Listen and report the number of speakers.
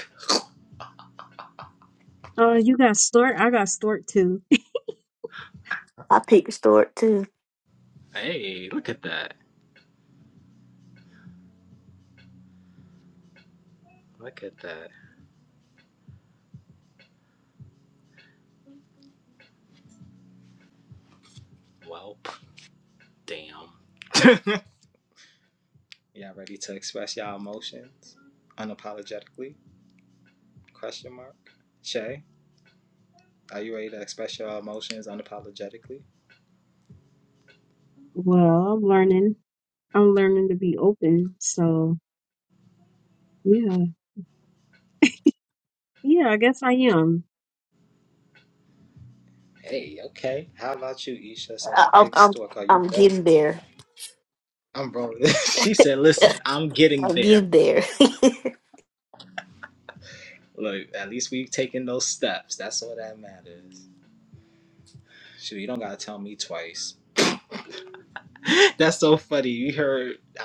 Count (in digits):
3